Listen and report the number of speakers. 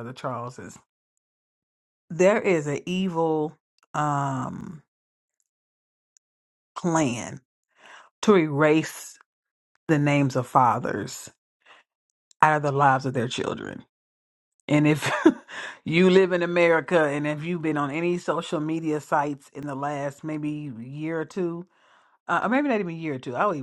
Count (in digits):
1